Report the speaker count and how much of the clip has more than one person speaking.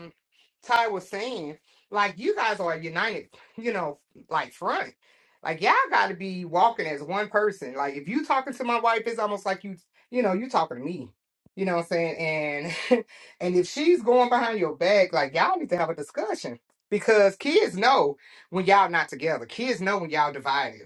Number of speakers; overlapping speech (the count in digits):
1, no overlap